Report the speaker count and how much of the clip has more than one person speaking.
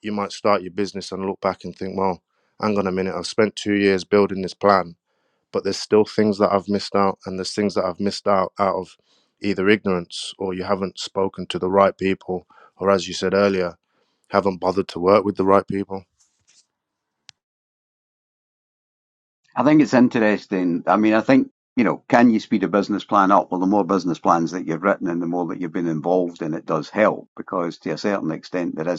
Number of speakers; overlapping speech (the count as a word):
two, no overlap